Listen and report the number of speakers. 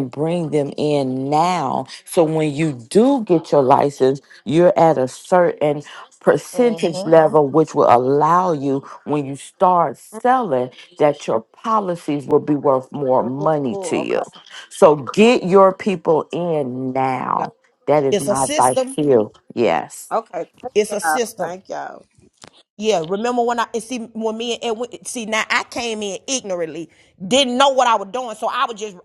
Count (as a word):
three